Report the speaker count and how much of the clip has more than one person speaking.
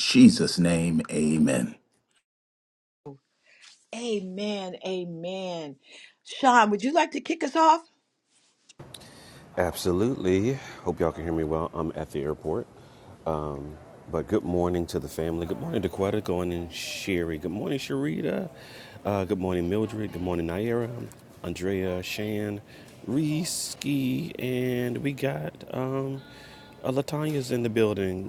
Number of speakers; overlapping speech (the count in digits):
3, no overlap